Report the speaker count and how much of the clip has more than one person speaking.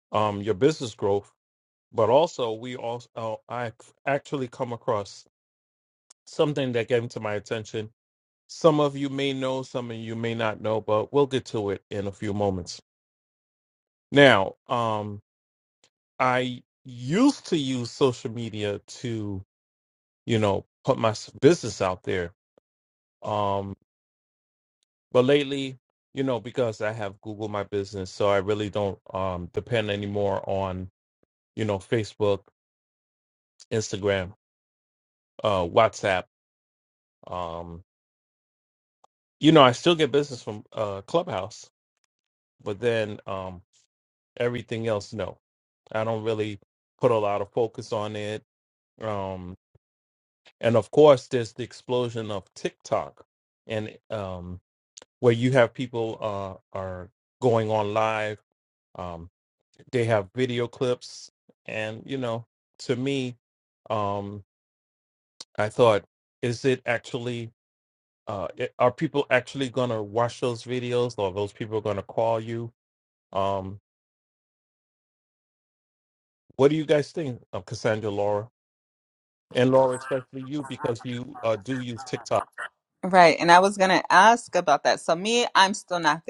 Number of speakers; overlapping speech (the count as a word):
two, no overlap